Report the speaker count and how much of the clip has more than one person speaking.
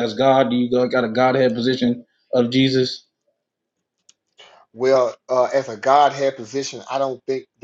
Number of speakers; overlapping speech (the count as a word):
two, no overlap